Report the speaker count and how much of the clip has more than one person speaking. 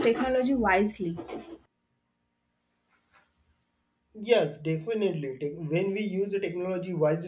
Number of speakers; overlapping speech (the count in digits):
2, no overlap